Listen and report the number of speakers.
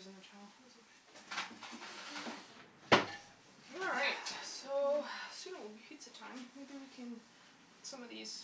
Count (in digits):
1